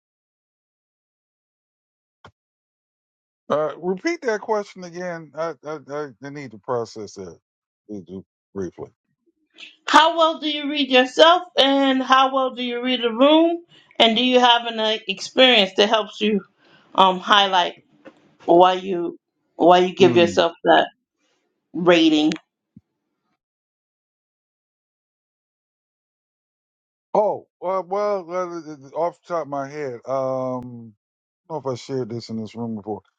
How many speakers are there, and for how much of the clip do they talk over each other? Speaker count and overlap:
2, about 1%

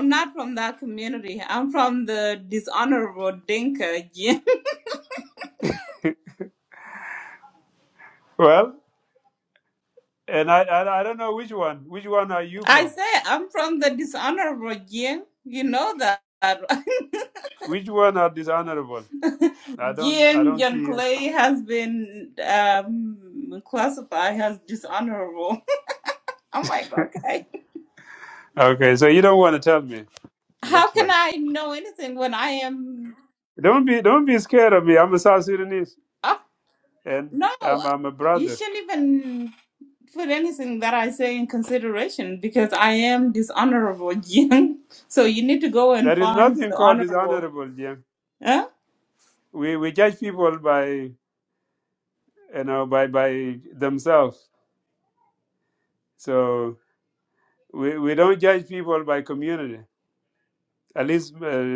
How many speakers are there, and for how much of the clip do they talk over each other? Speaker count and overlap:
2, about 5%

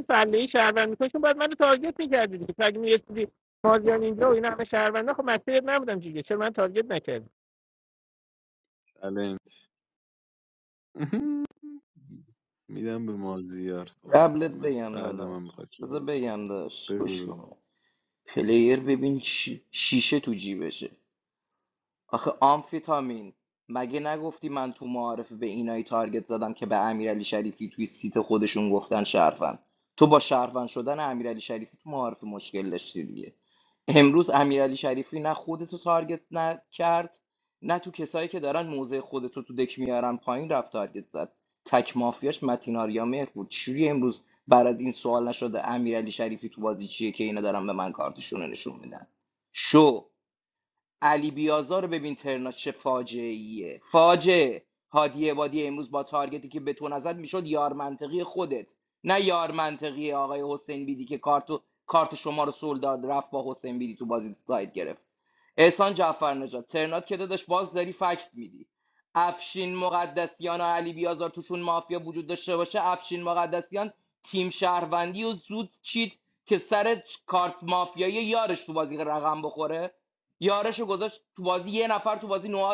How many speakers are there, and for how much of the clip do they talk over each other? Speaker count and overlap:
3, about 2%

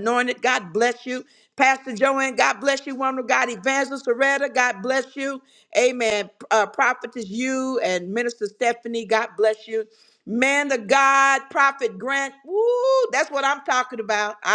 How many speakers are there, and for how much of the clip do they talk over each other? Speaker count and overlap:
1, no overlap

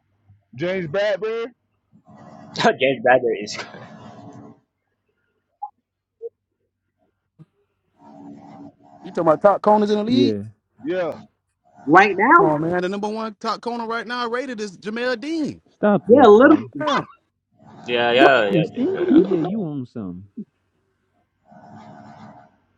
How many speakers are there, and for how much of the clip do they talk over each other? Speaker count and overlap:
5, about 9%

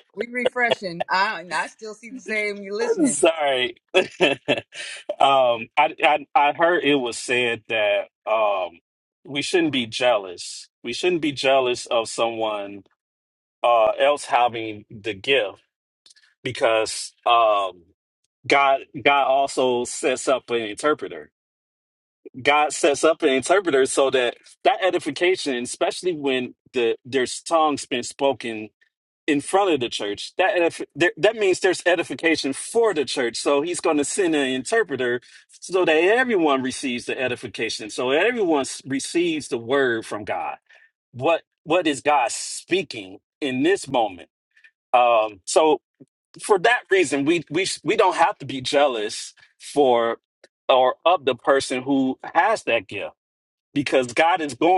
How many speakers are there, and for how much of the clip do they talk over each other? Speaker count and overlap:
2, under 1%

